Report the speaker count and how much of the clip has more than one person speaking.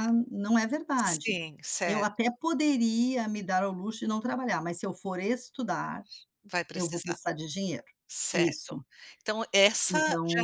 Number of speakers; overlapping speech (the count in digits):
2, about 19%